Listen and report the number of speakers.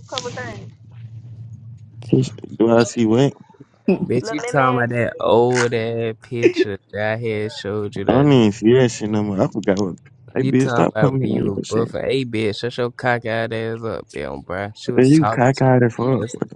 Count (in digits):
3